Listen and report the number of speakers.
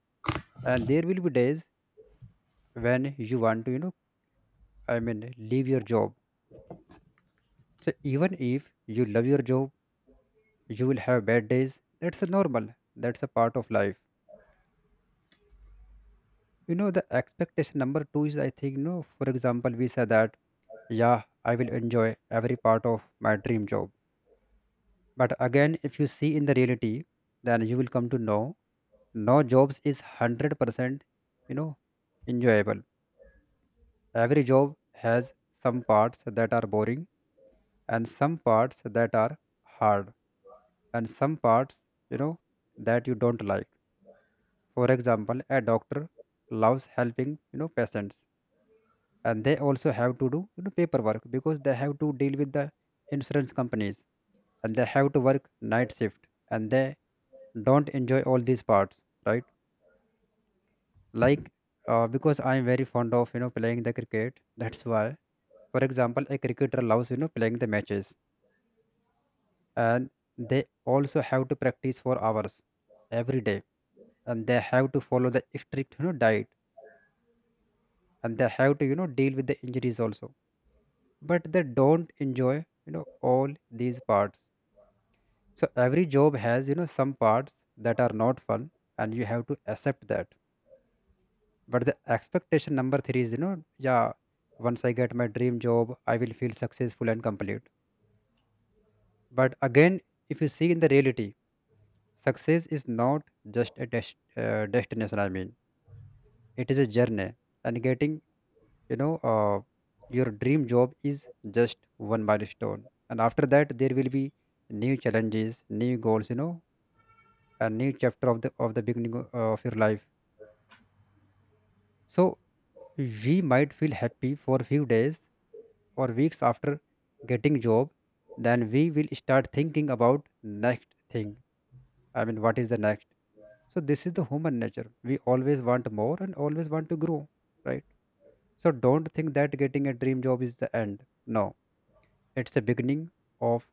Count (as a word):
one